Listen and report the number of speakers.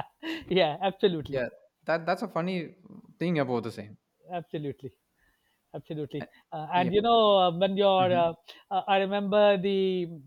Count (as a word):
two